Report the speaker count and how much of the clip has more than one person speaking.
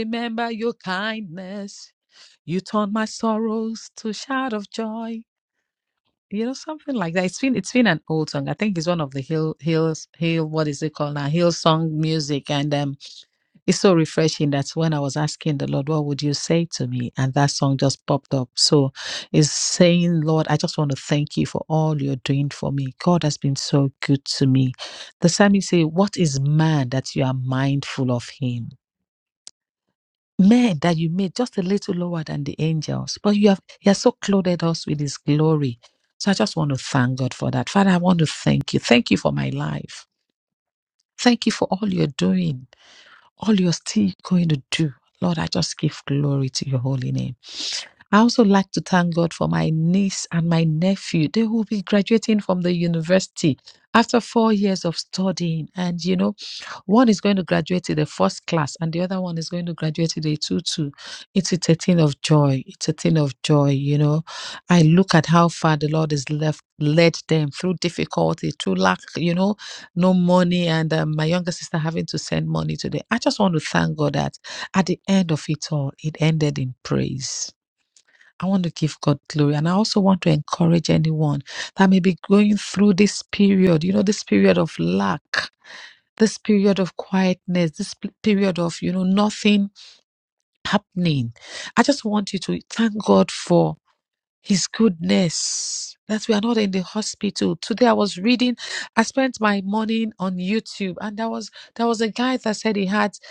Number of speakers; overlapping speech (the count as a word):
one, no overlap